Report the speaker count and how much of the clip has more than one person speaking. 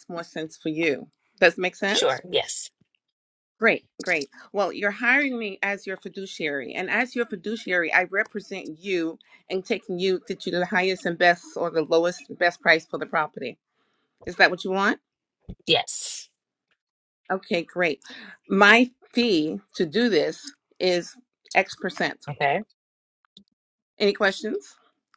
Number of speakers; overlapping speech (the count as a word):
two, about 1%